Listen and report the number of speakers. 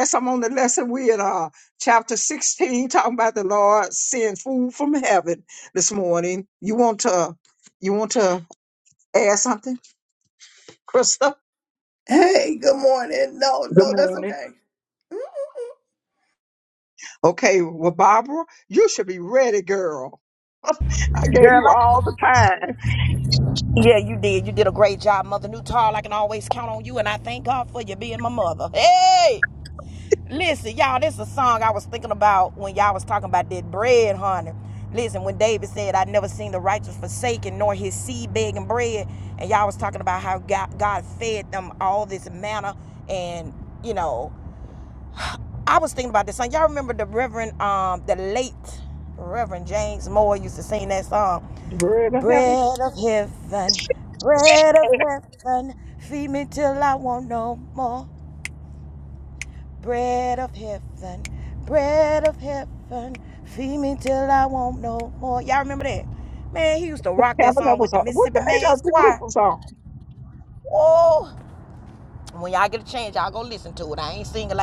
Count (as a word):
three